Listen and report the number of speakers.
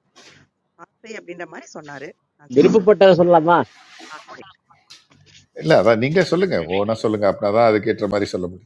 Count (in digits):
3